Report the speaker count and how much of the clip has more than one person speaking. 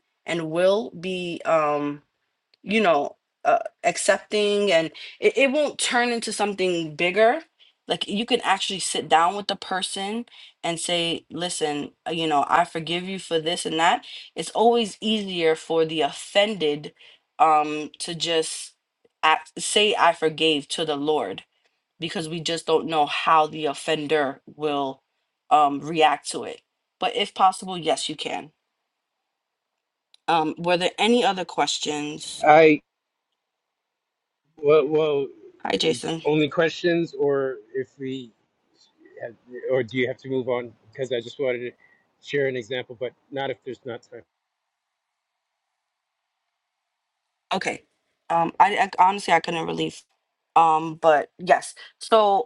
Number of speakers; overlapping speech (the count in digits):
2, about 1%